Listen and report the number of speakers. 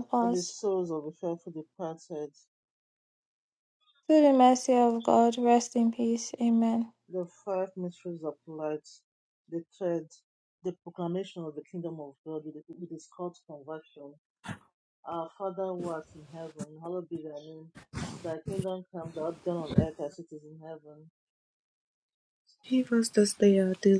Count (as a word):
three